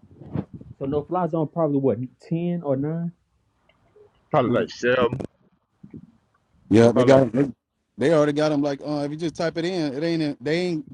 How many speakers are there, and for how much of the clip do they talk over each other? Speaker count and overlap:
3, about 4%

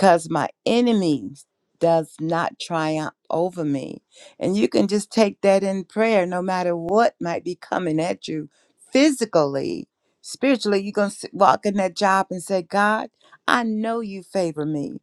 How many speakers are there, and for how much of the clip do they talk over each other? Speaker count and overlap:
1, no overlap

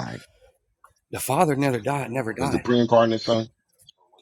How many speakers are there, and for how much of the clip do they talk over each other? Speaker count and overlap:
2, about 7%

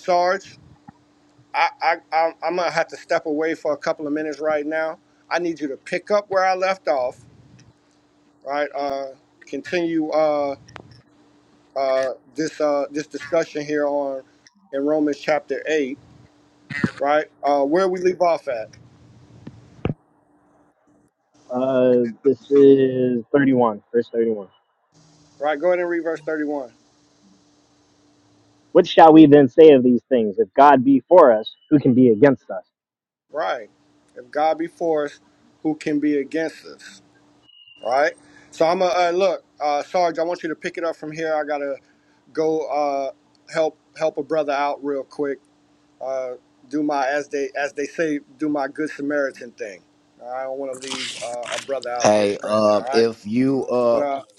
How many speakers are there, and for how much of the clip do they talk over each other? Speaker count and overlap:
3, about 2%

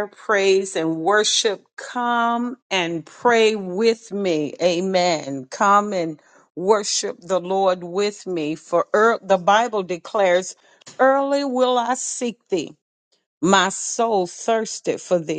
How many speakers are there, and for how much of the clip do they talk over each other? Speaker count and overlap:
1, no overlap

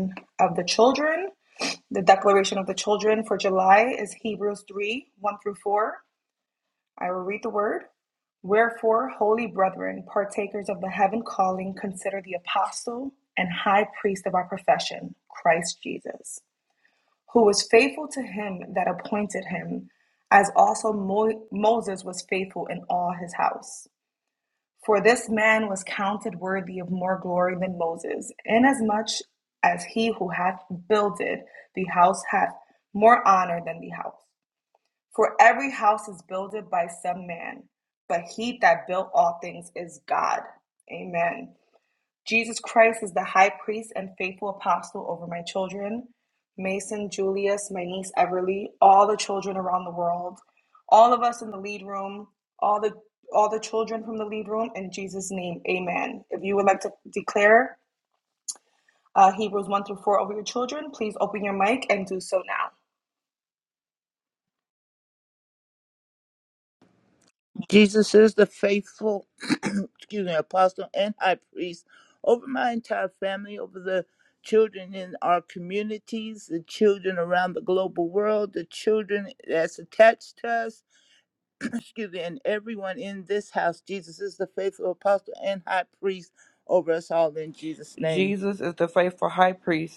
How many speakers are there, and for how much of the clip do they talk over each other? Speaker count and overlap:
3, under 1%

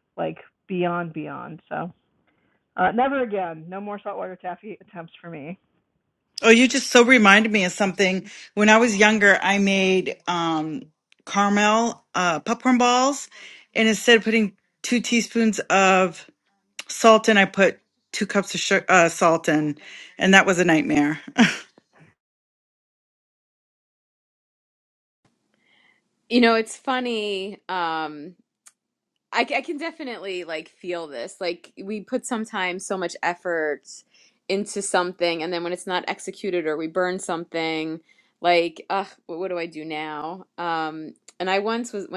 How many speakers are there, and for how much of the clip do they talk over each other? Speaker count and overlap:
3, no overlap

